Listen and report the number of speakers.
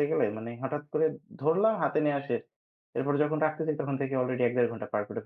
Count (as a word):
one